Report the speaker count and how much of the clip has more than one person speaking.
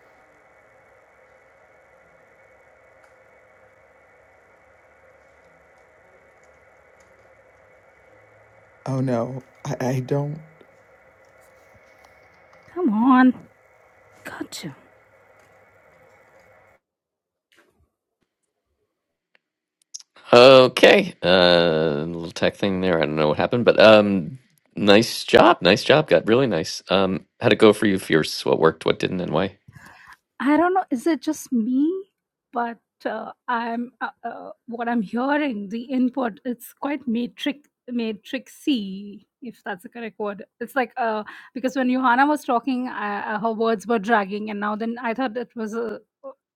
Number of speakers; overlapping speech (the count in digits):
3, no overlap